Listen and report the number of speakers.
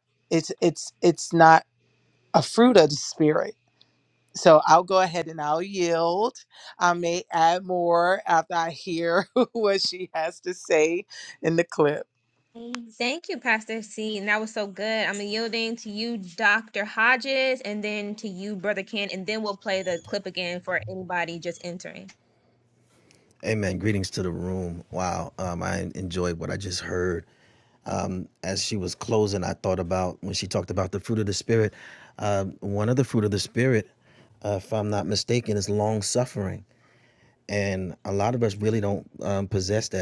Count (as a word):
three